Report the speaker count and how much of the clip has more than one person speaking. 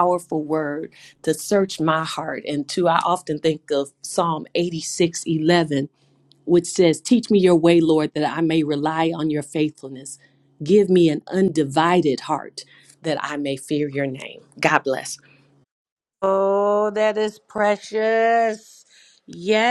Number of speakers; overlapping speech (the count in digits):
2, no overlap